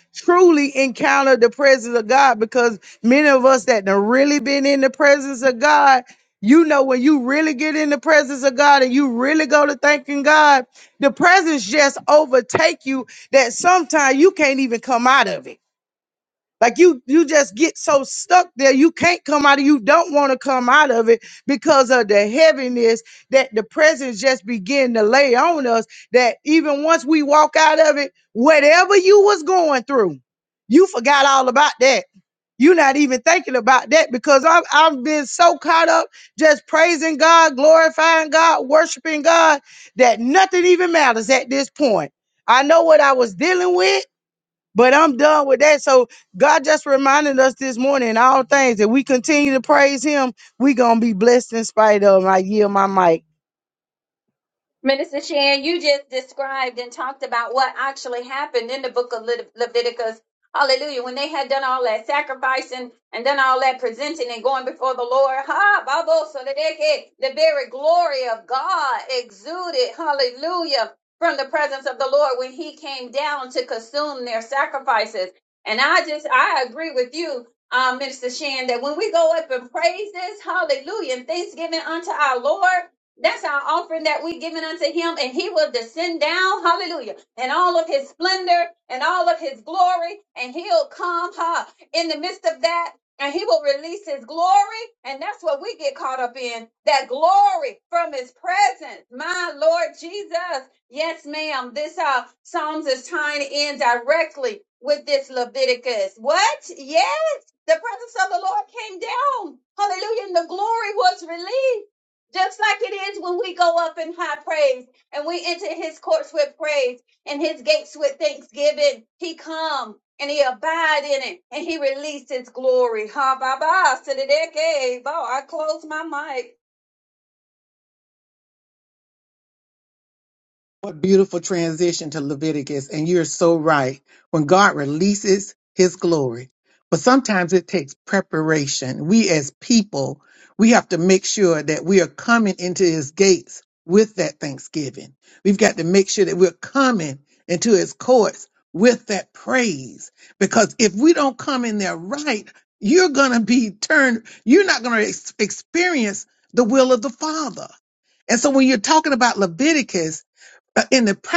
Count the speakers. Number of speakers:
3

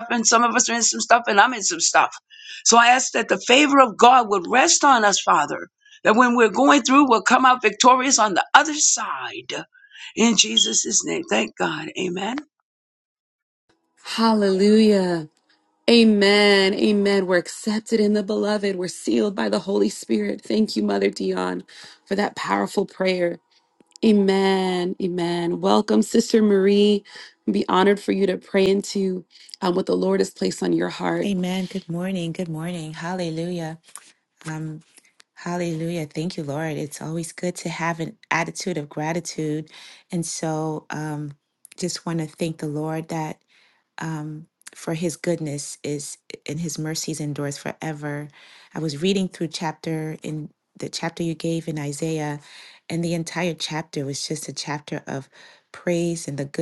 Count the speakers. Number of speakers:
3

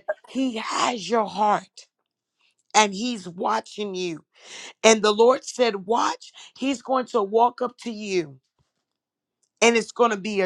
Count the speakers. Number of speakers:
1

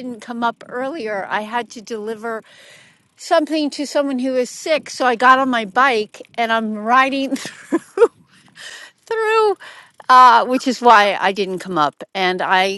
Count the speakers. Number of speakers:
1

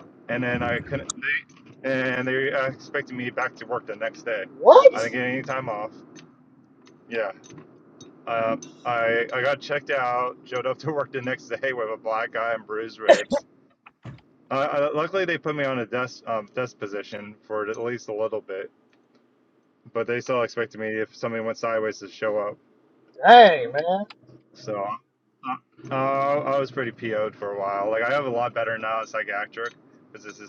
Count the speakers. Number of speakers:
2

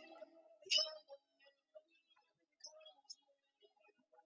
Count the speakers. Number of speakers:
0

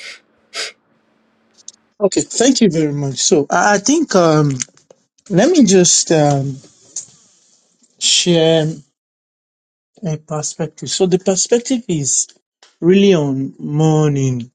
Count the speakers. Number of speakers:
1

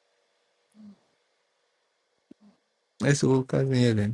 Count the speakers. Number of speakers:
1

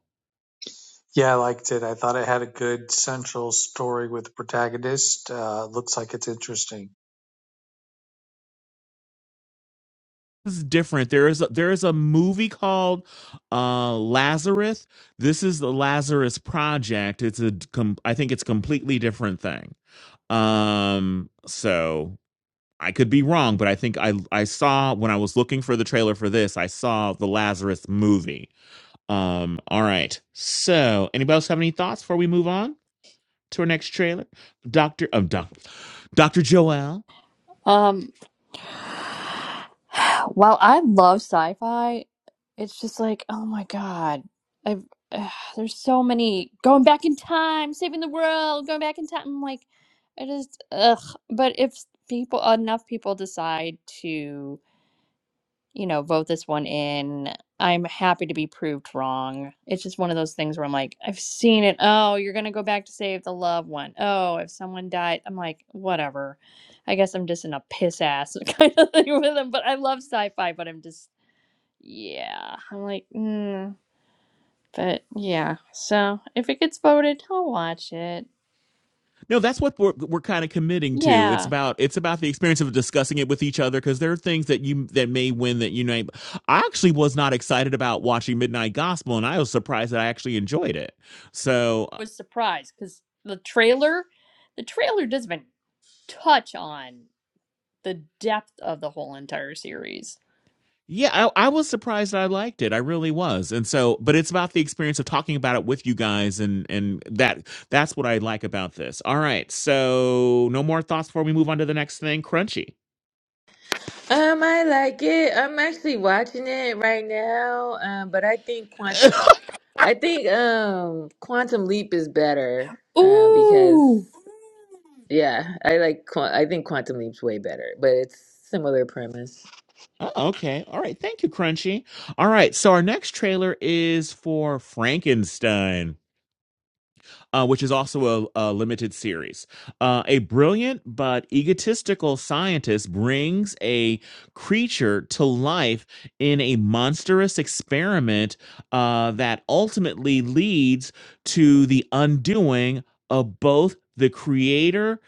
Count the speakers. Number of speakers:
4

